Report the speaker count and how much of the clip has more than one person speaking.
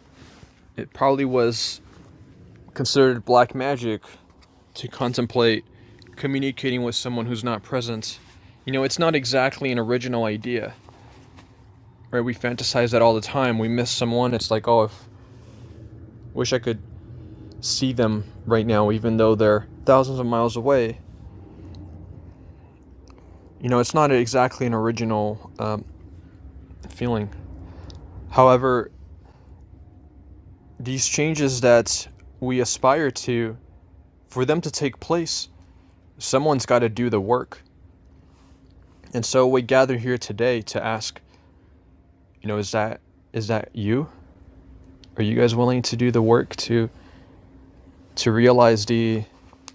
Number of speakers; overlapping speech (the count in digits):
1, no overlap